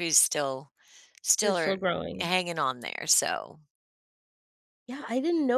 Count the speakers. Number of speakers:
two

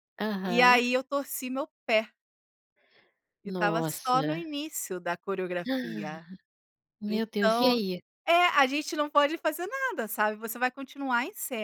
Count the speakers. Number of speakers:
two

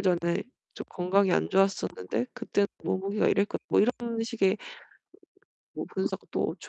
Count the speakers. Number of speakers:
one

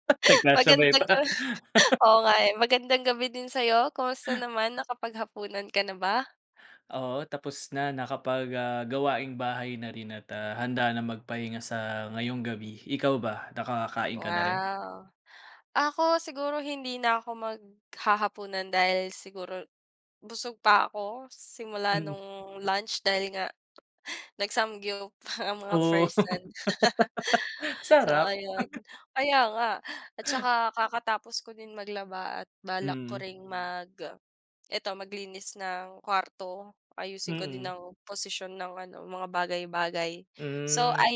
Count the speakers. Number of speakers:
two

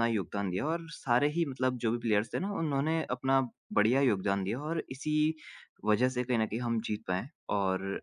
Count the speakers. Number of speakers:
one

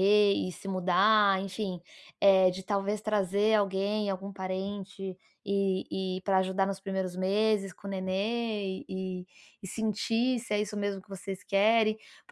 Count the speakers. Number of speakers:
one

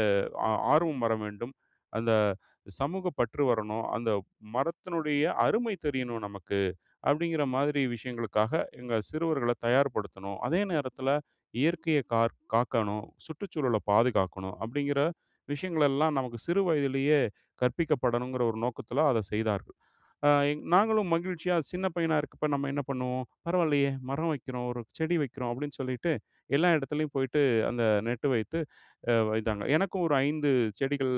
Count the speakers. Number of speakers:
one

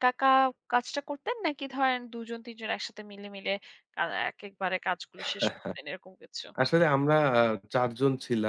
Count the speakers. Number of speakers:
two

